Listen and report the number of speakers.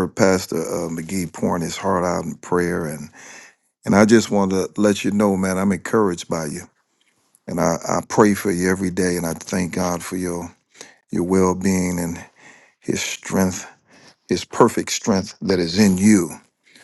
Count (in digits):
1